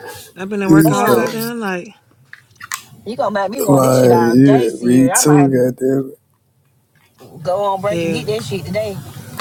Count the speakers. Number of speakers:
three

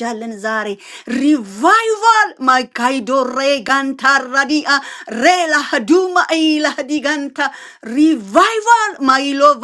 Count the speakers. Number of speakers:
one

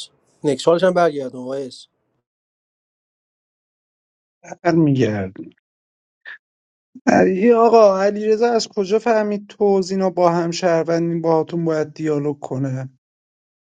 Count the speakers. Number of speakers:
two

